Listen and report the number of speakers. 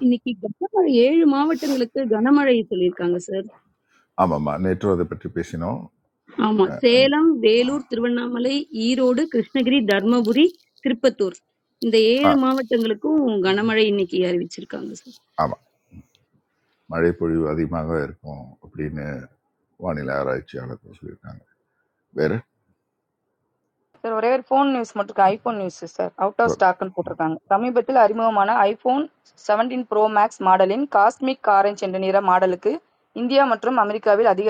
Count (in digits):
3